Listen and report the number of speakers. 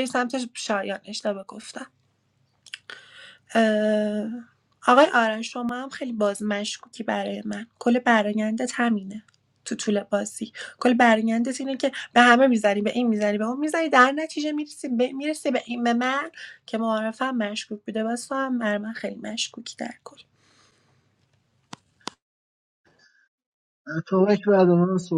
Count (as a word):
two